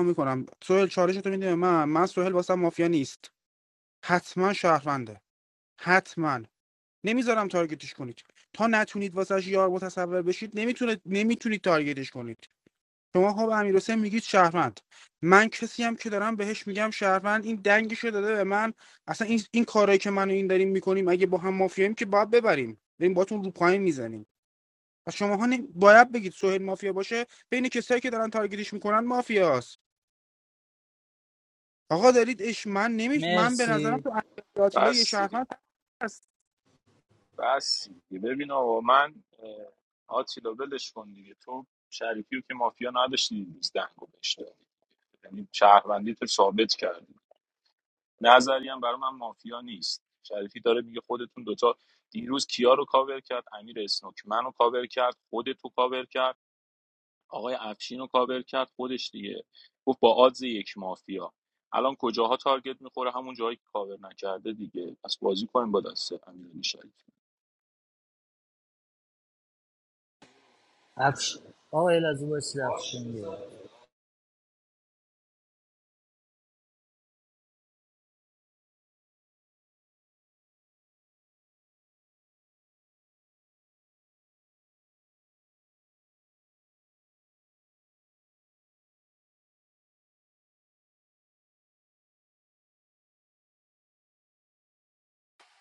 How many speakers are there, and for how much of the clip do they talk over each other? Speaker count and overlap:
three, about 2%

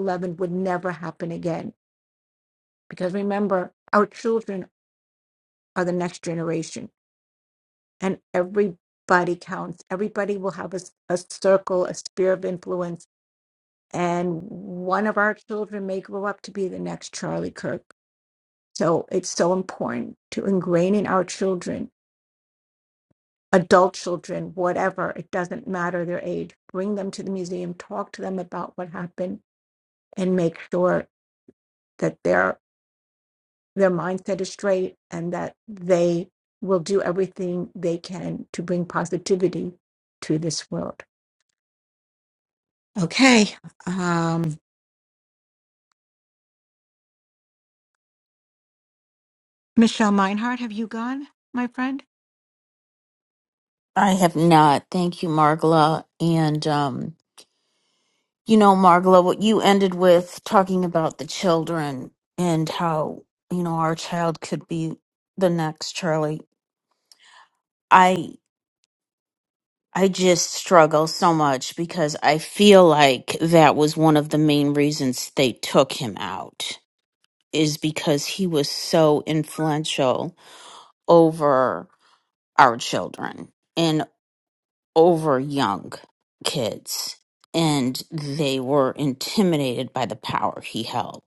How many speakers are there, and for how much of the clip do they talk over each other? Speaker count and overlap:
two, no overlap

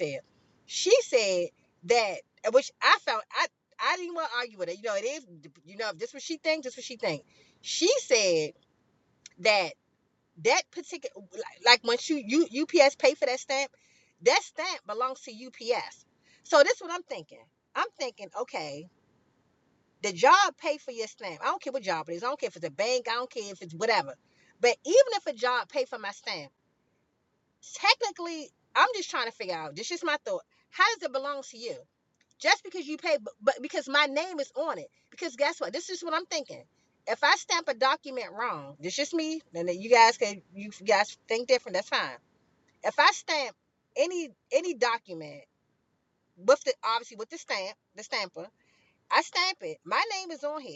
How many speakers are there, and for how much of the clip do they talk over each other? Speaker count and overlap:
one, no overlap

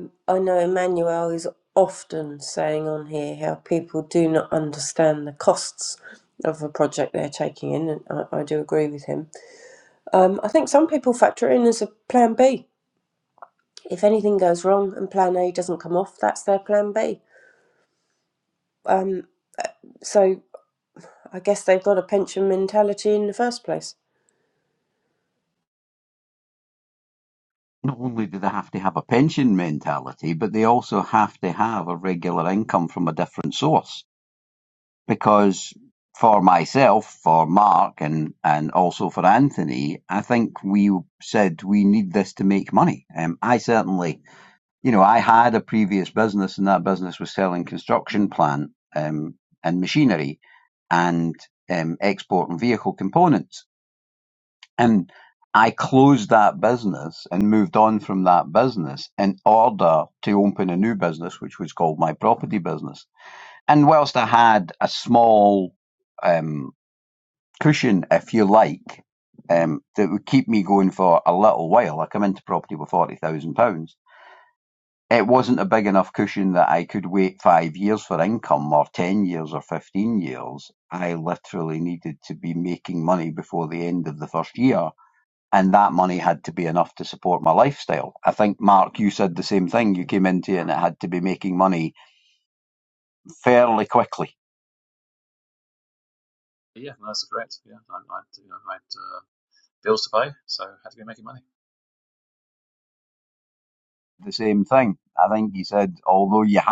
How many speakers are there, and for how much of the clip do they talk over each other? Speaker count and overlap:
three, no overlap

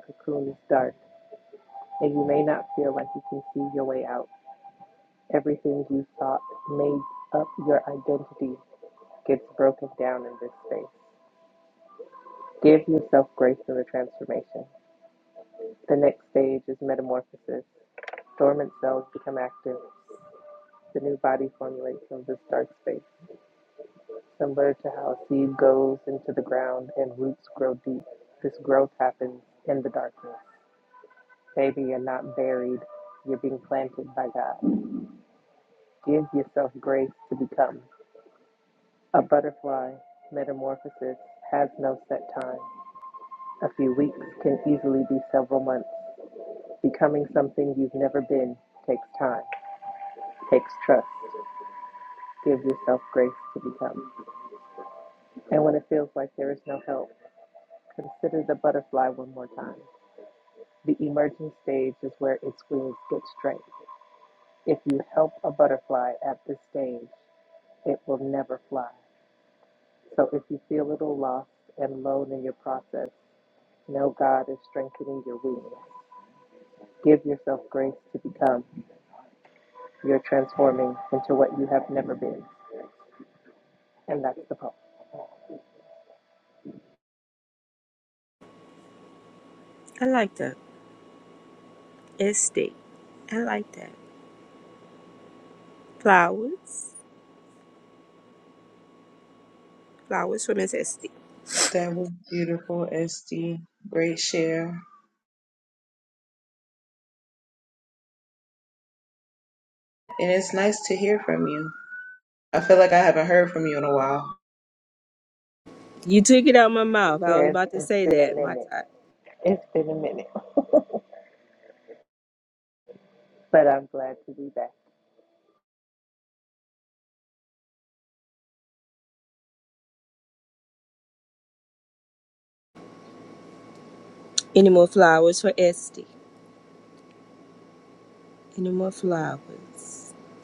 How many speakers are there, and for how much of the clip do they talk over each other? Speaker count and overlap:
three, about 1%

